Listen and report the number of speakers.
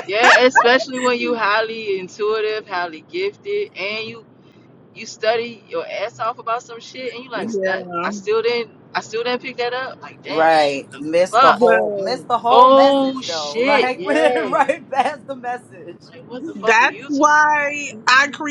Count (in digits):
3